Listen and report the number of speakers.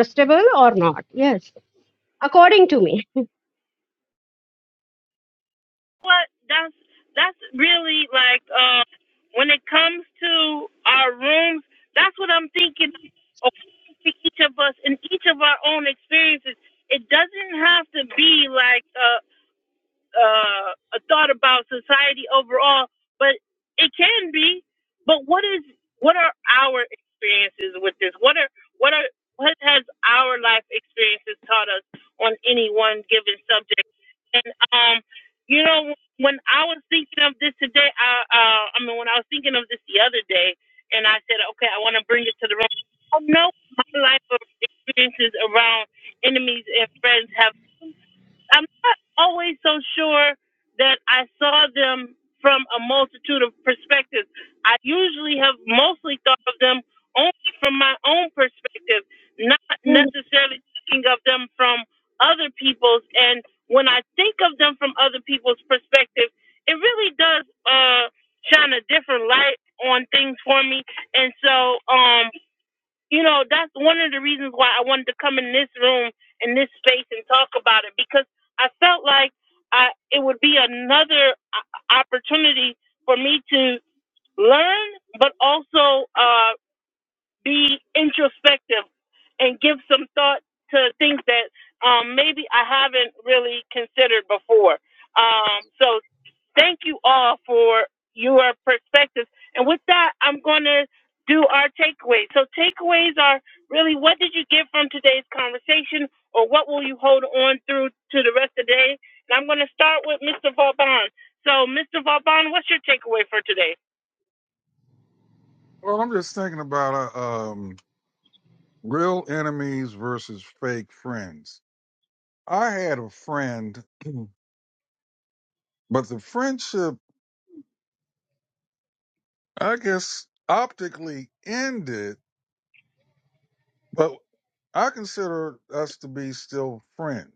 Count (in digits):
3